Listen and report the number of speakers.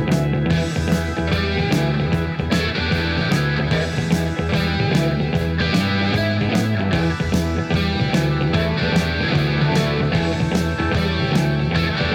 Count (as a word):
zero